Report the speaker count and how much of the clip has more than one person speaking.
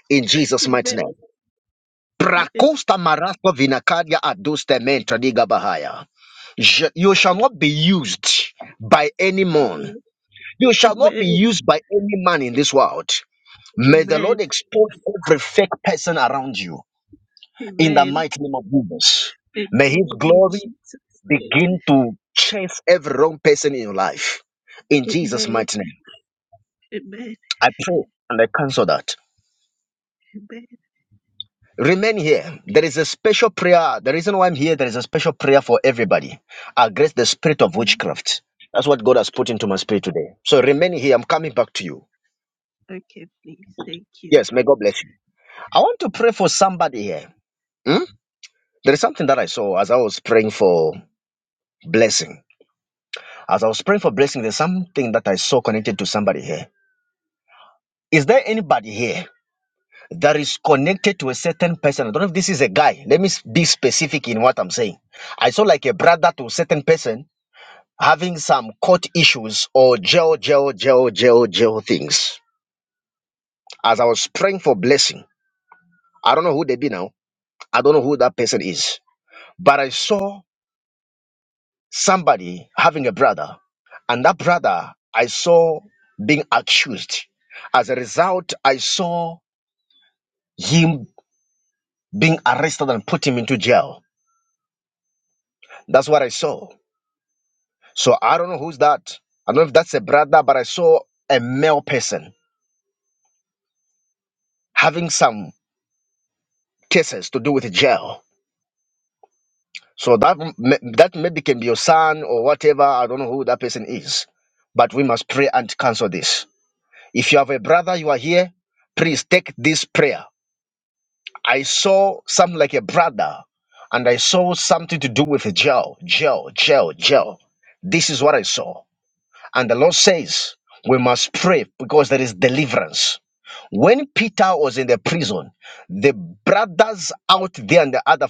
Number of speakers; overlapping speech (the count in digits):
2, about 3%